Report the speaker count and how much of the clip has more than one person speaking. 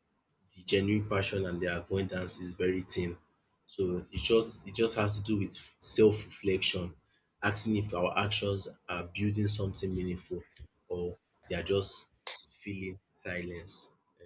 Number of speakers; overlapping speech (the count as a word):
one, no overlap